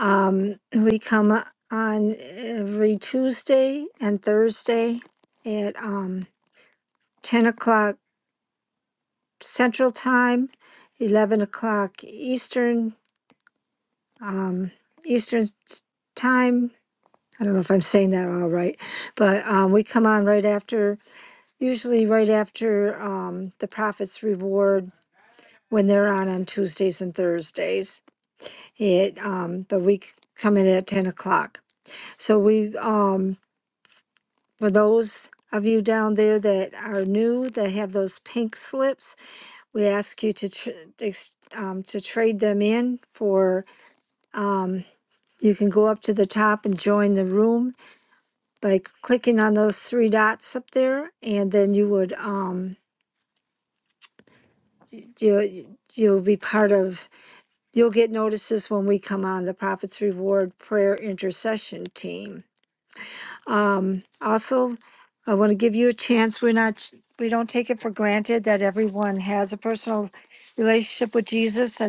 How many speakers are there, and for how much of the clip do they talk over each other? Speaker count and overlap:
one, no overlap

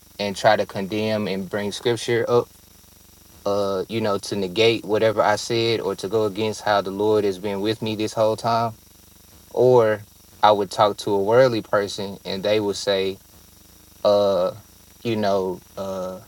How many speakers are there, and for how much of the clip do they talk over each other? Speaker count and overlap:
one, no overlap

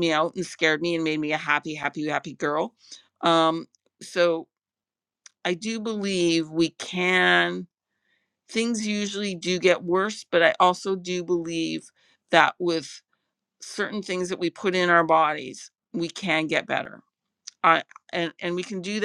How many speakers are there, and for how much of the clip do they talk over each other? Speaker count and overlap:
one, no overlap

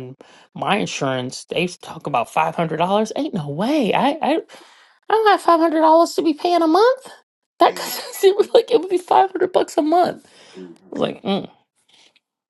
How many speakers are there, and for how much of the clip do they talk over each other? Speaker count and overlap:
one, no overlap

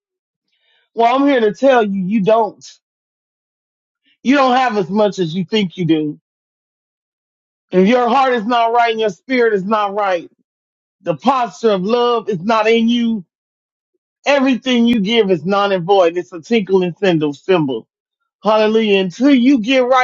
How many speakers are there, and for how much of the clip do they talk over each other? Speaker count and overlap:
one, no overlap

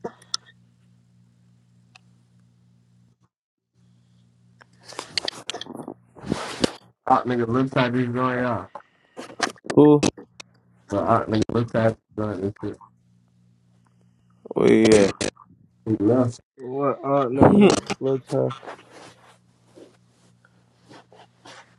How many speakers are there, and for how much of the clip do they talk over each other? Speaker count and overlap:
three, about 2%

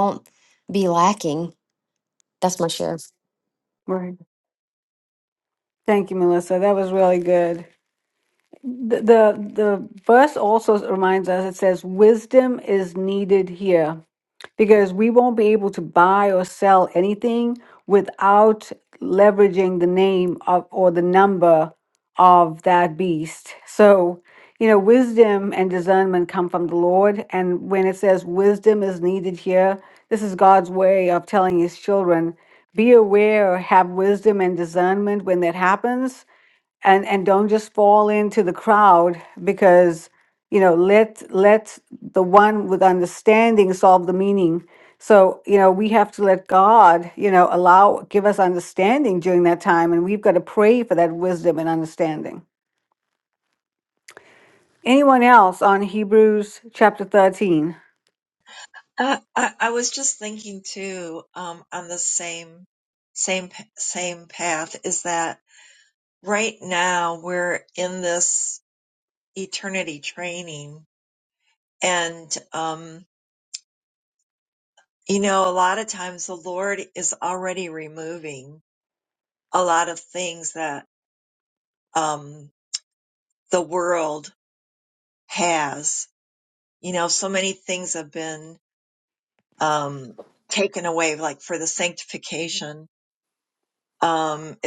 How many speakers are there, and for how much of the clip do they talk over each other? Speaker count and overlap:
three, no overlap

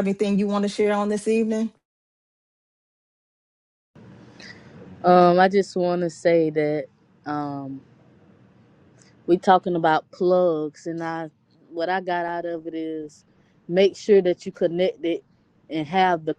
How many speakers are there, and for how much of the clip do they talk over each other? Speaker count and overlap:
two, no overlap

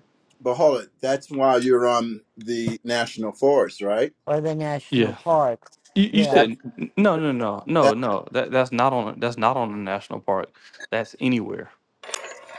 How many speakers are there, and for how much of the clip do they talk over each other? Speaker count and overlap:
three, about 7%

